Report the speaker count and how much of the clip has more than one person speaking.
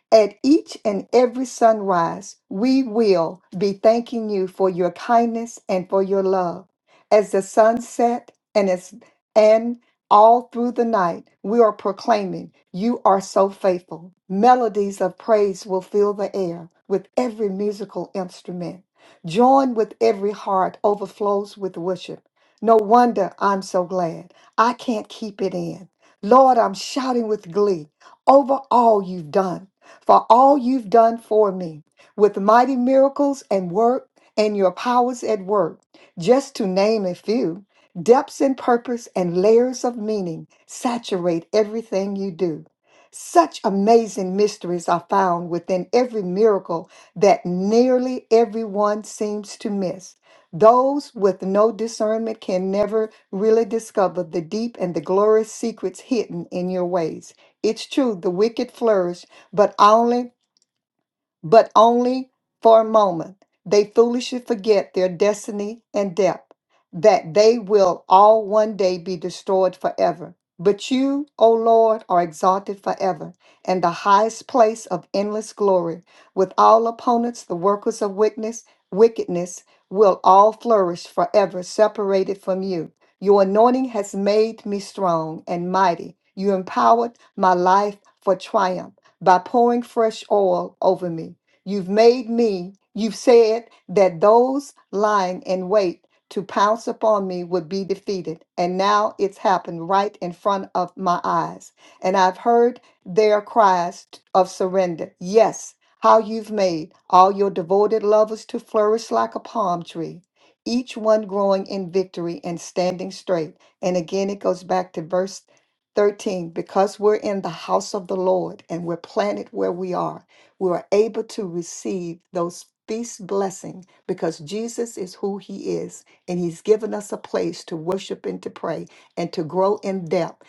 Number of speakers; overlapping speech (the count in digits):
1, no overlap